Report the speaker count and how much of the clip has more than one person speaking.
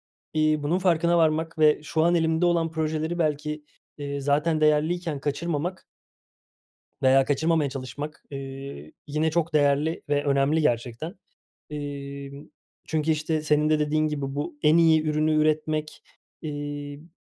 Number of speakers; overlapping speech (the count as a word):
one, no overlap